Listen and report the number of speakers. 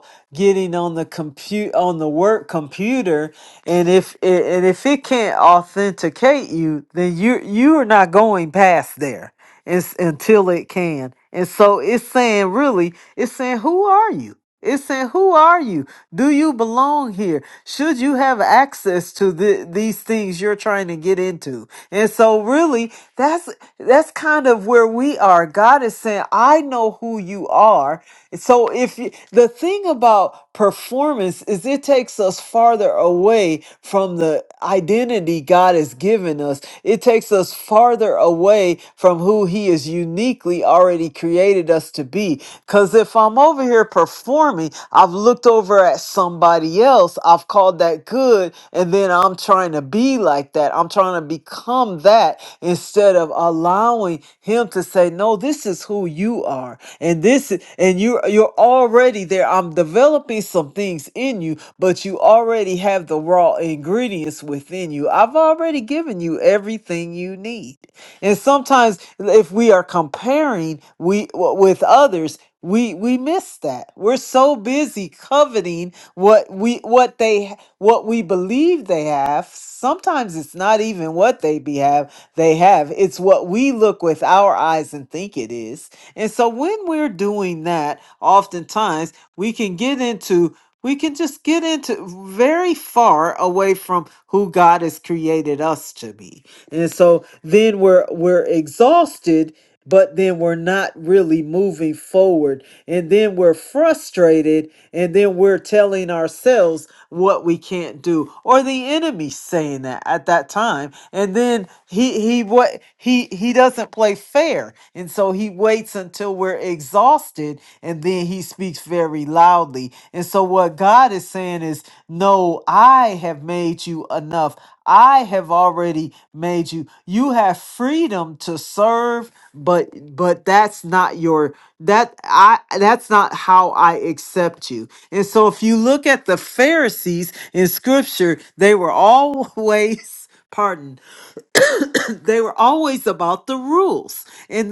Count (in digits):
1